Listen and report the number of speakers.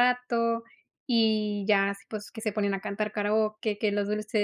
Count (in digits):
1